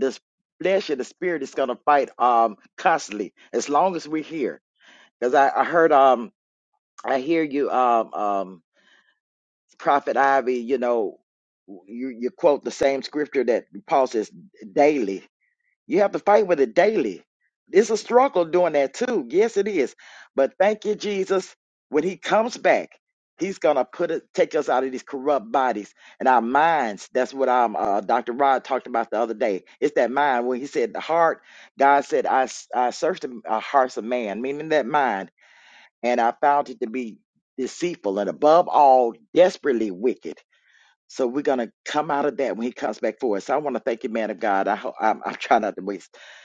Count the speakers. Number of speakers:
one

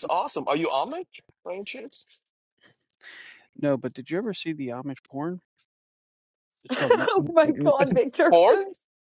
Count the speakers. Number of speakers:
three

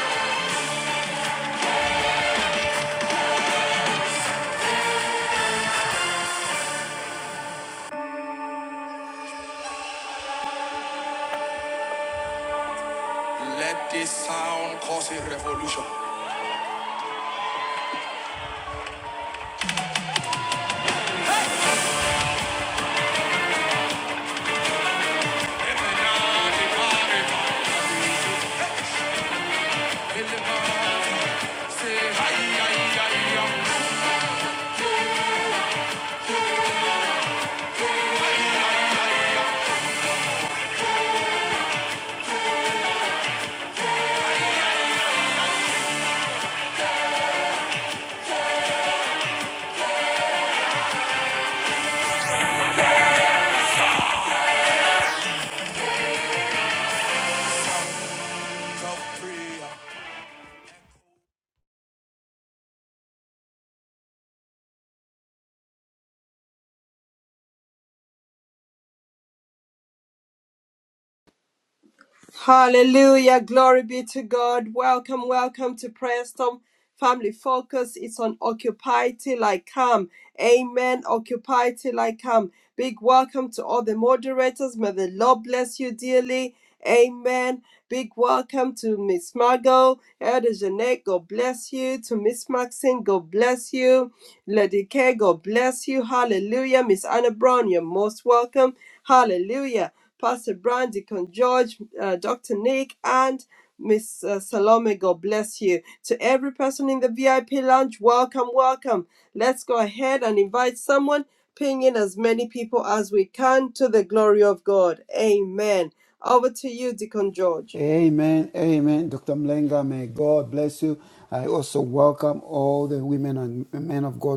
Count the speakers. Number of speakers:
three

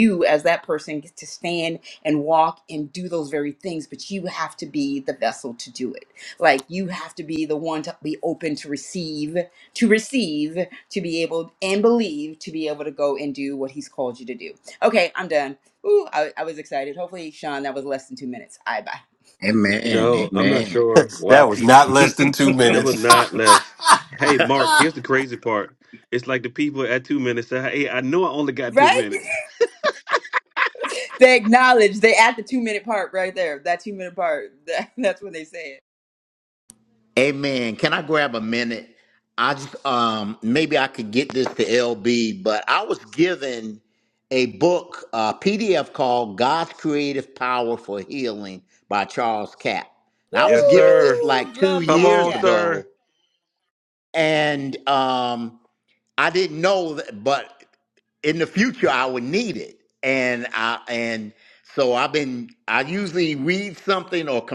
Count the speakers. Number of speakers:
four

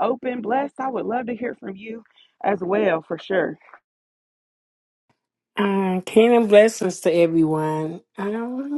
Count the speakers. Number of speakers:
two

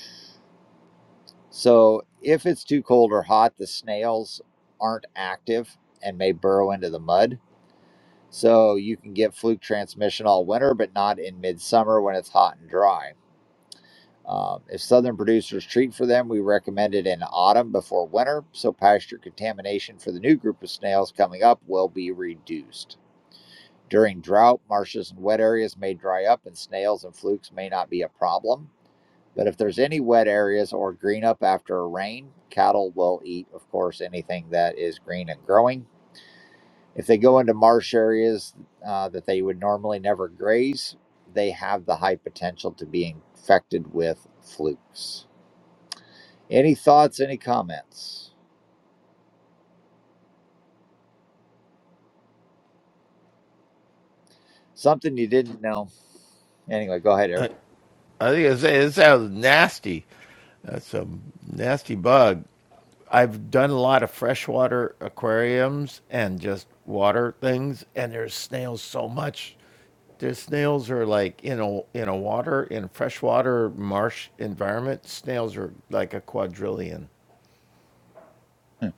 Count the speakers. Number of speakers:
two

